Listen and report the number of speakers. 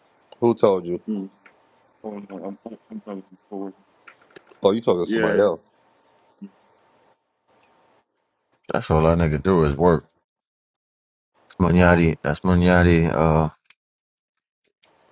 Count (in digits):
3